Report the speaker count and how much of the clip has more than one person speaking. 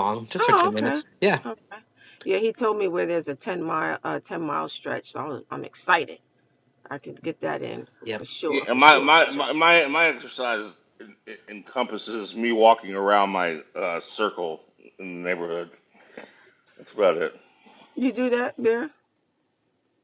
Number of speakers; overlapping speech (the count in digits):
3, about 9%